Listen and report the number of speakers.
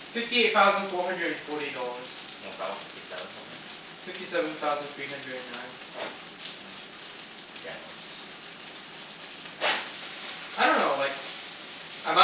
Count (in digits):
2